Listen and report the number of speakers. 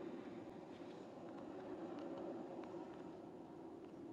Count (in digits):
0